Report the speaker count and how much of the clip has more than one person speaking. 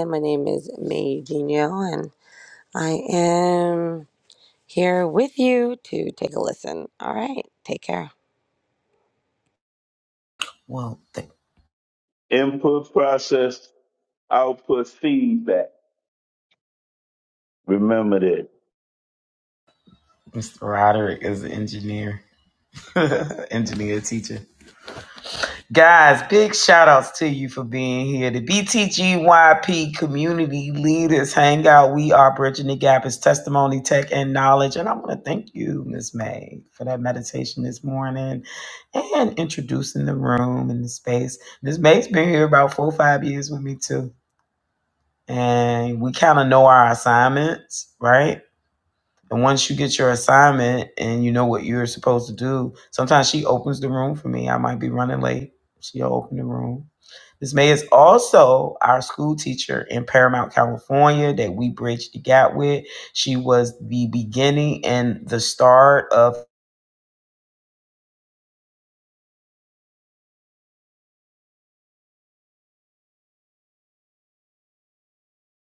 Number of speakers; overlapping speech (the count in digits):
3, no overlap